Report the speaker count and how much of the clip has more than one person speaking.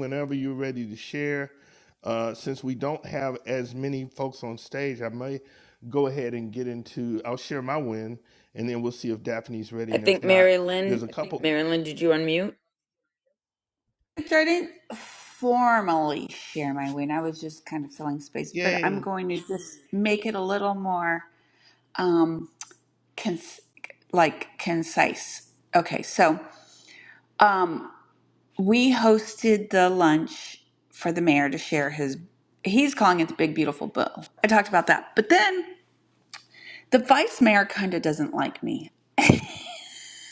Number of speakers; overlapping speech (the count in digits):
3, about 3%